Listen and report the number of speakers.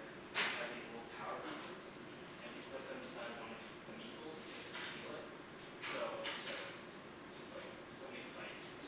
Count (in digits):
1